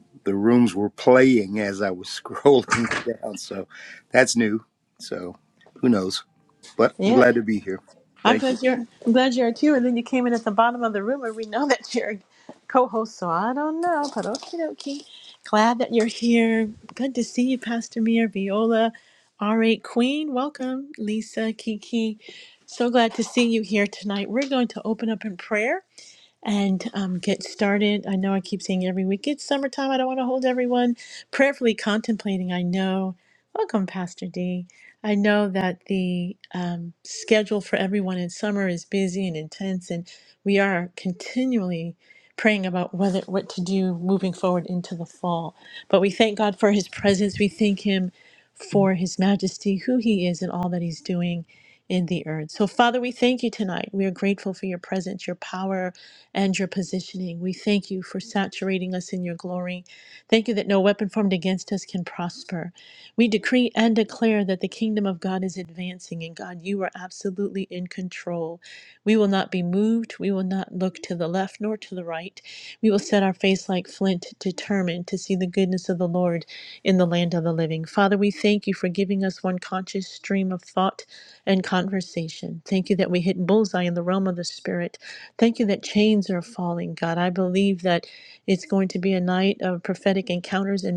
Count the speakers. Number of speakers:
two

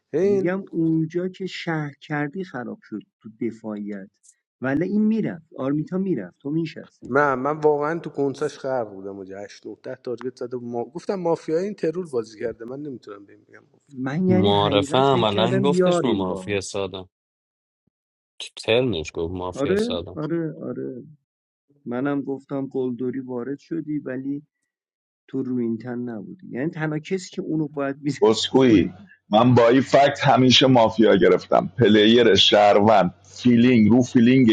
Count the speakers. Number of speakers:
four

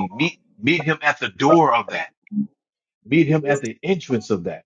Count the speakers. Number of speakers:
one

